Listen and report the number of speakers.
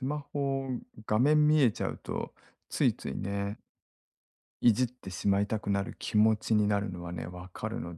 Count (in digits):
1